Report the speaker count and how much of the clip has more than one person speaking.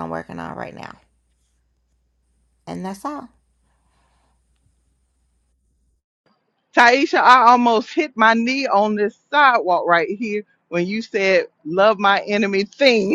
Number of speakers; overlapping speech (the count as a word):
two, no overlap